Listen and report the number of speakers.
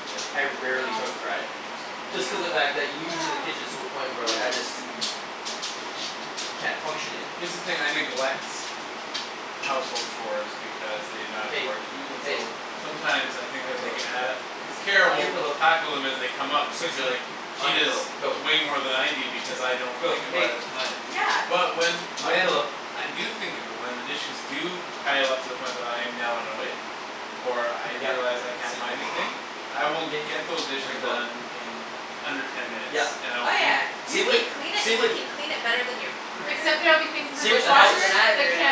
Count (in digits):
4